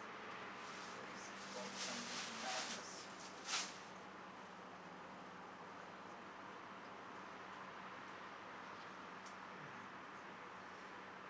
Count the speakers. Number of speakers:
one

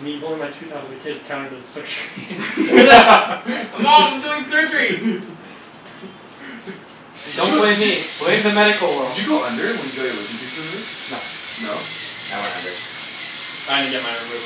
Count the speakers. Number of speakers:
four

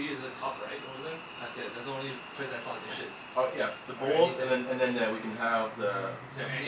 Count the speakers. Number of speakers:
two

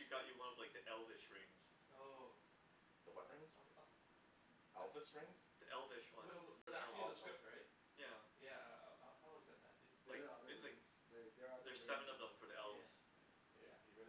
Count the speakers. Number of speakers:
four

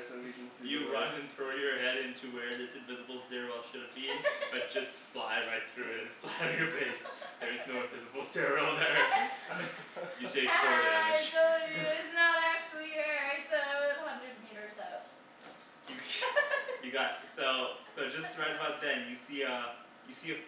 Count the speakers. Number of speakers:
three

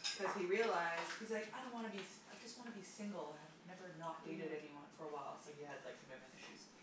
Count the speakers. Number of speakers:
one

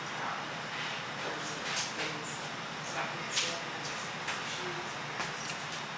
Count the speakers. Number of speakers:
zero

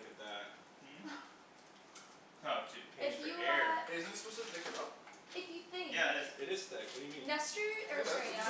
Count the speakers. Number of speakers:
four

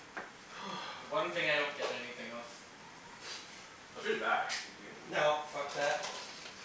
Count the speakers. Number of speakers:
two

